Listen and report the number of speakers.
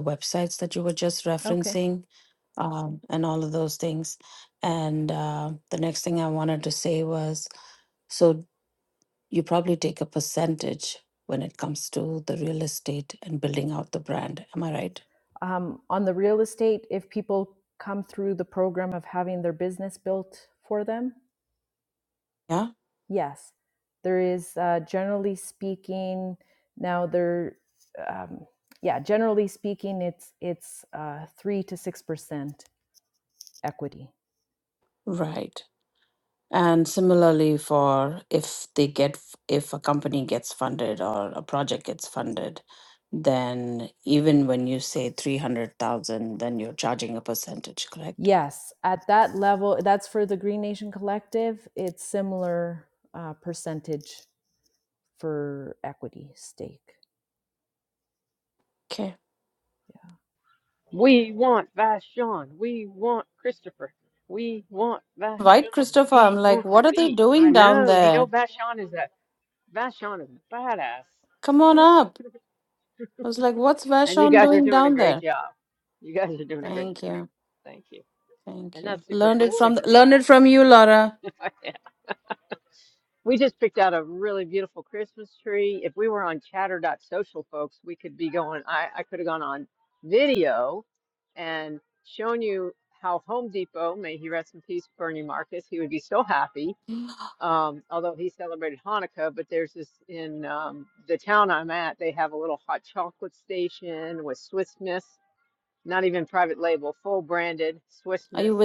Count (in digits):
3